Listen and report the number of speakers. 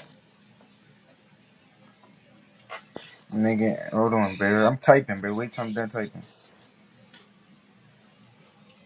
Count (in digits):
1